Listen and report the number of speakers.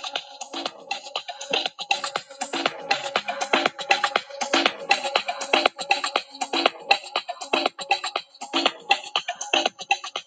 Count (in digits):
0